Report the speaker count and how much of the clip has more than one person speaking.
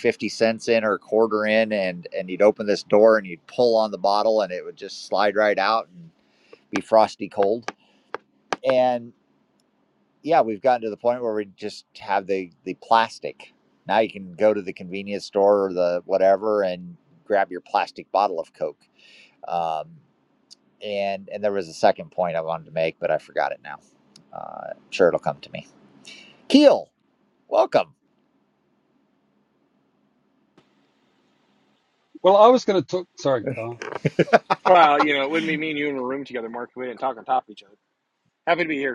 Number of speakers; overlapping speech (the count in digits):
3, no overlap